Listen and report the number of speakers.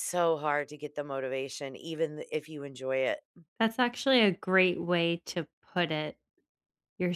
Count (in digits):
2